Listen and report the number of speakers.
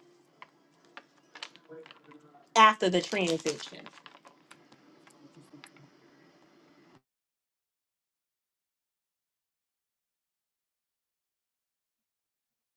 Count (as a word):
one